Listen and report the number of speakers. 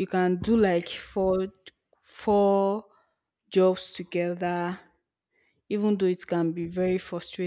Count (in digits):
1